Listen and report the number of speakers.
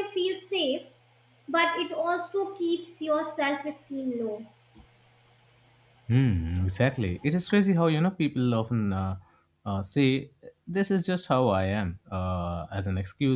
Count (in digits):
2